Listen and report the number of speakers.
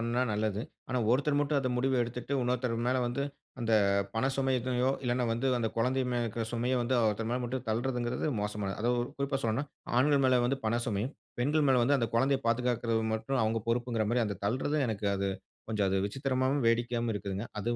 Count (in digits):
1